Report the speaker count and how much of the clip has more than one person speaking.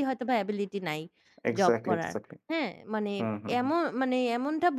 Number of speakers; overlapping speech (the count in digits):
2, about 15%